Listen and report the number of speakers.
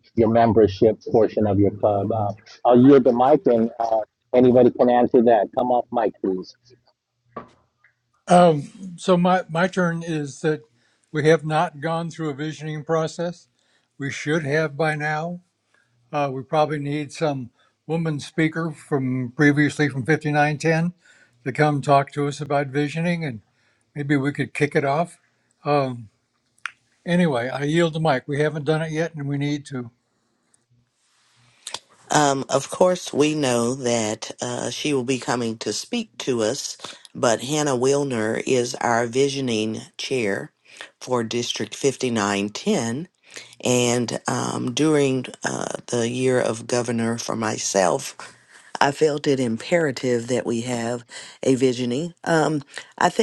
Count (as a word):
three